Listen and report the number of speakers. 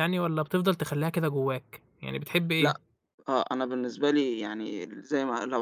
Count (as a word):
two